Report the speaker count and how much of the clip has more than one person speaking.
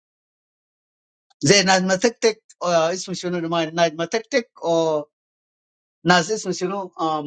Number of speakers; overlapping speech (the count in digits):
1, no overlap